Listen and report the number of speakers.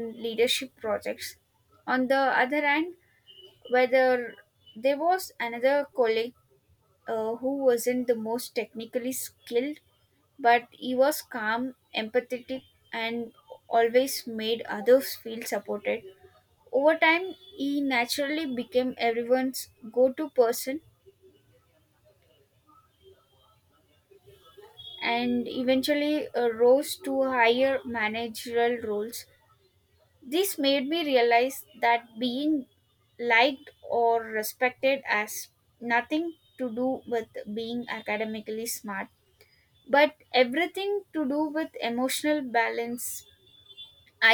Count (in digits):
1